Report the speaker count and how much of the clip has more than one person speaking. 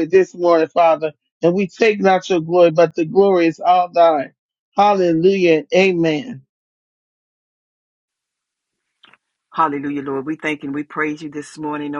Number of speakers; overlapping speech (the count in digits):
2, no overlap